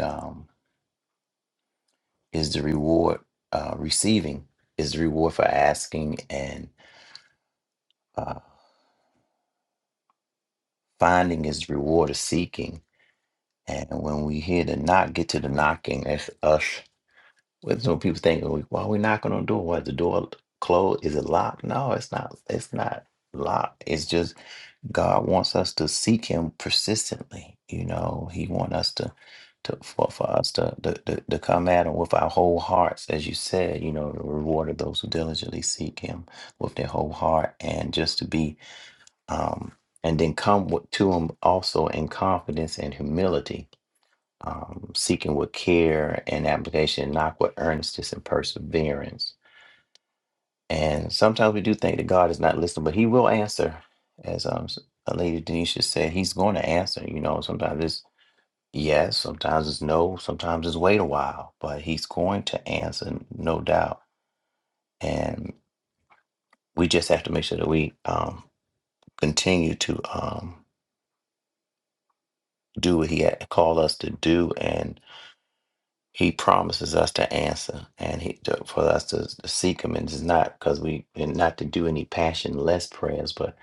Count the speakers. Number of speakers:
one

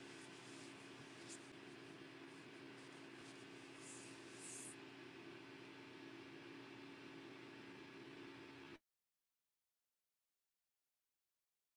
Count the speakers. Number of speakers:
zero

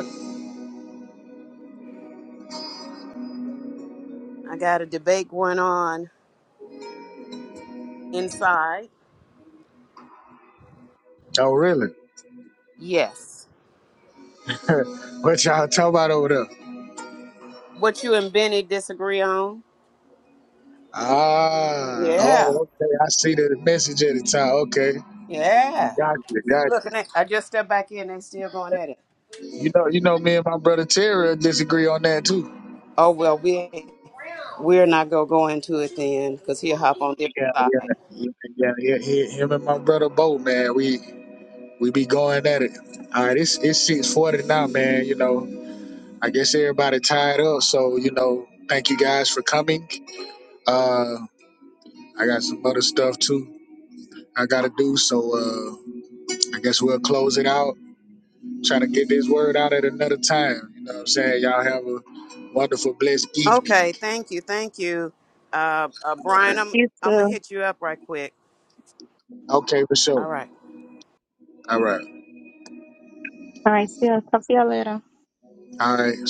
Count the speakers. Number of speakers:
three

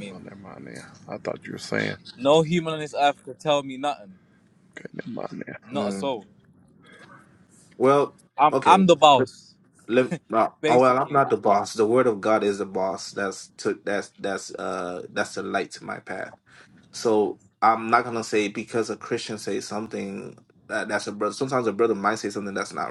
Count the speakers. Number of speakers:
three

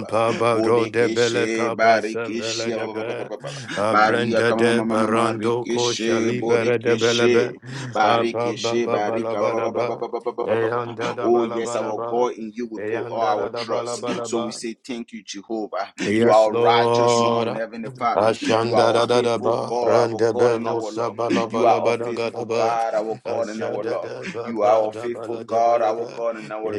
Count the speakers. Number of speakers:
two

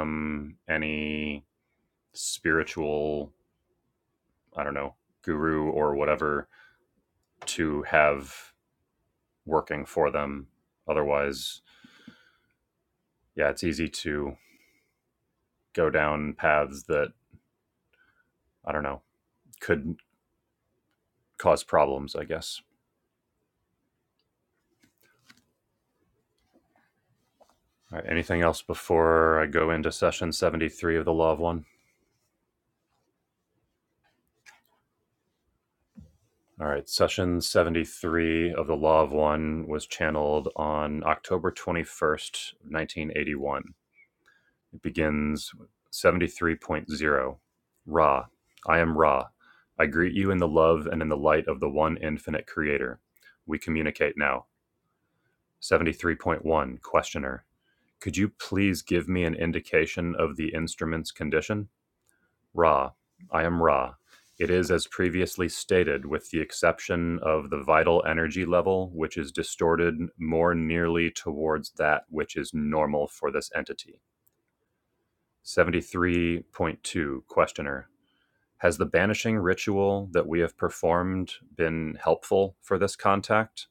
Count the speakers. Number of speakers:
one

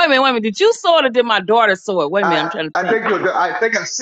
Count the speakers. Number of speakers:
two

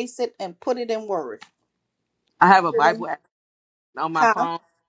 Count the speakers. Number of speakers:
two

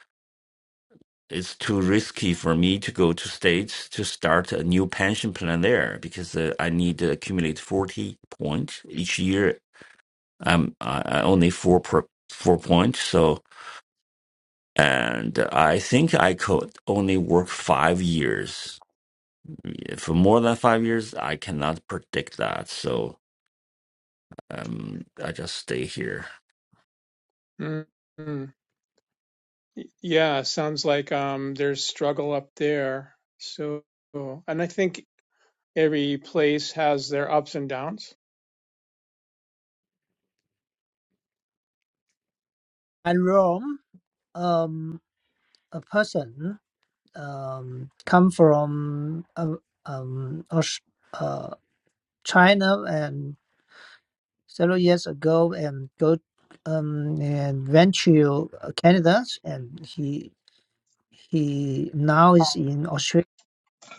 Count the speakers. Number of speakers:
three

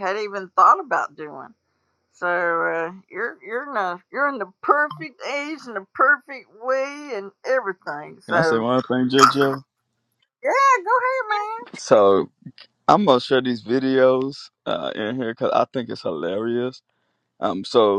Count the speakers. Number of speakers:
two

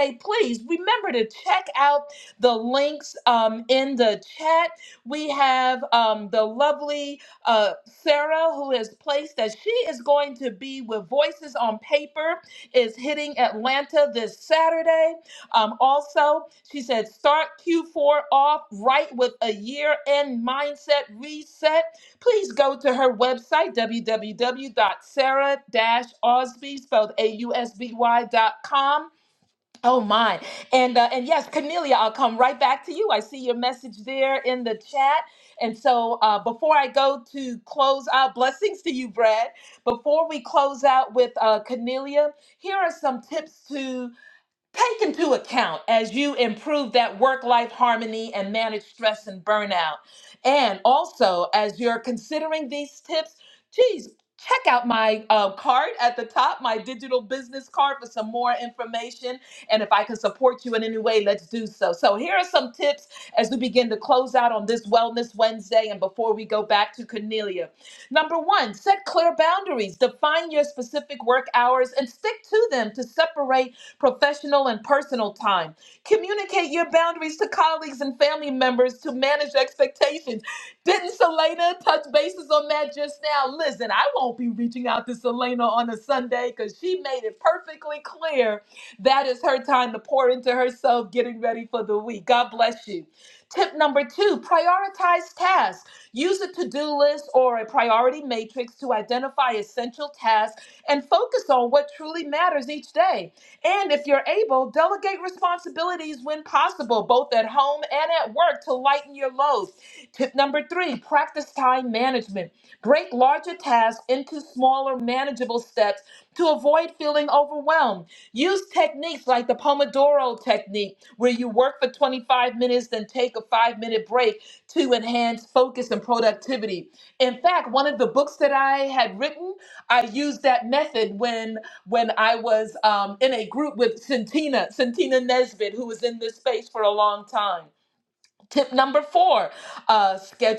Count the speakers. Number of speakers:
one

